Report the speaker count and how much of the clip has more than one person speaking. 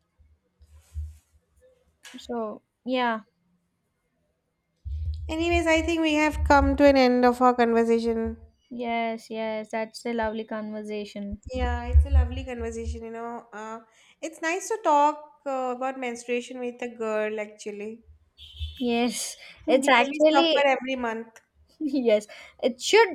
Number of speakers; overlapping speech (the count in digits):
2, about 4%